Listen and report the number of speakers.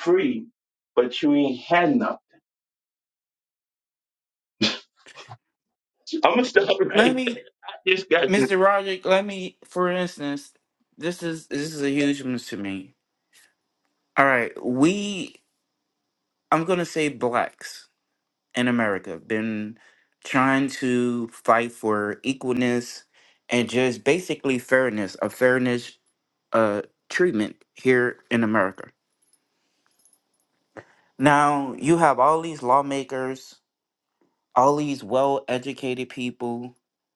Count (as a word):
two